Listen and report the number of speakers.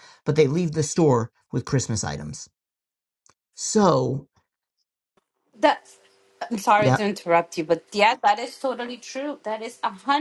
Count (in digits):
2